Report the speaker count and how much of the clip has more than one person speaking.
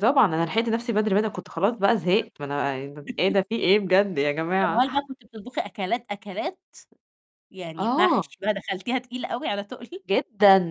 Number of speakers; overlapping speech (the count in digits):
2, about 7%